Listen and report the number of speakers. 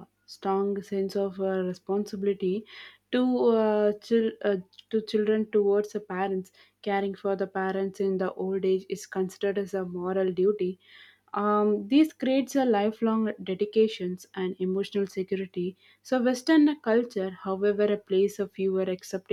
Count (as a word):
one